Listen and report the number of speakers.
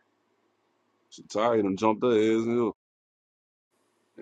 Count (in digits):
1